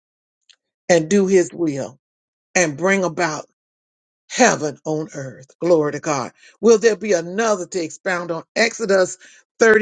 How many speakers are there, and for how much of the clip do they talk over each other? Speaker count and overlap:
1, no overlap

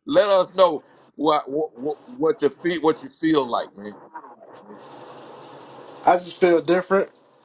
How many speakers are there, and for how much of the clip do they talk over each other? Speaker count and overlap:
2, no overlap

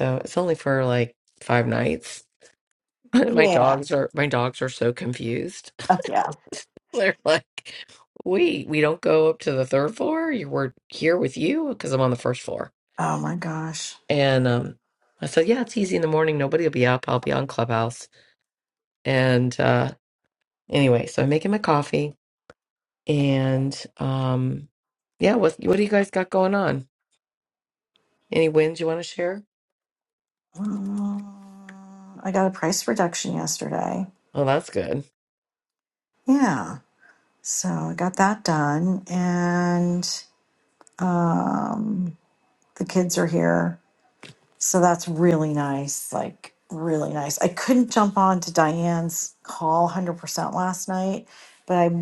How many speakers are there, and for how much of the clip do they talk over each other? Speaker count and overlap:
2, about 1%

